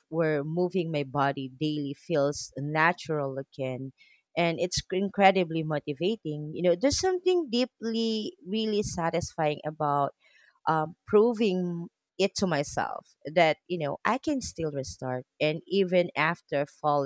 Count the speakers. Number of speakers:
one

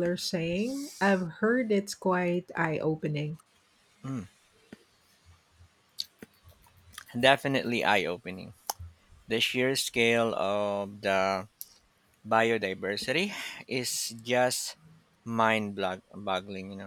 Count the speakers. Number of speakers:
two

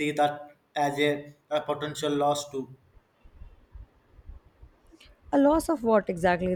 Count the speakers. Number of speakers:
two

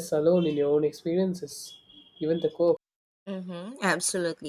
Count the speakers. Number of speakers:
two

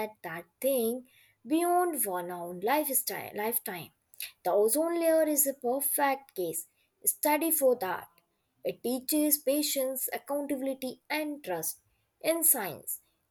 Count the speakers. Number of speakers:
one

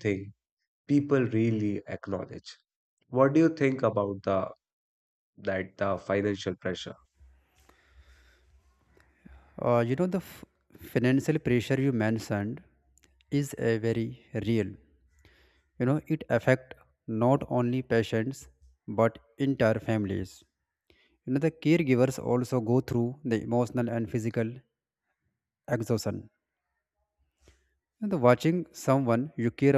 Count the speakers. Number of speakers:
two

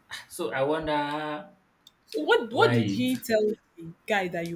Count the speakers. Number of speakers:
two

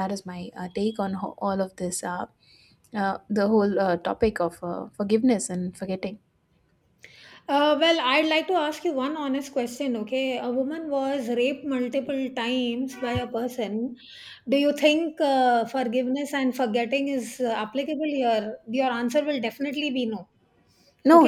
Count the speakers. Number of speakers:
two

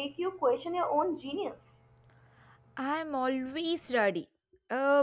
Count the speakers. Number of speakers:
two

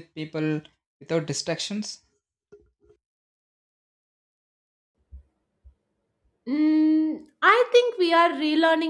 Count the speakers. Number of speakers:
two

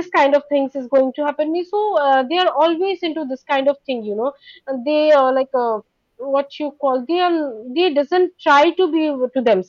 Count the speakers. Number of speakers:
one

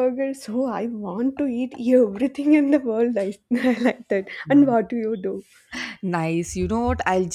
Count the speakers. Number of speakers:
two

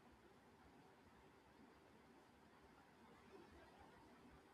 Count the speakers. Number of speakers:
zero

